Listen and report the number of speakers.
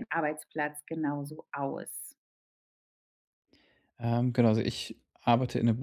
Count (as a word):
two